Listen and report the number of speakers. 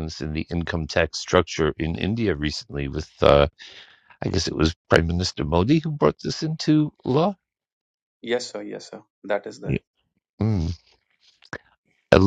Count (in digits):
2